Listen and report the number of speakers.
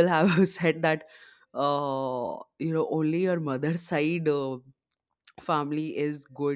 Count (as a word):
one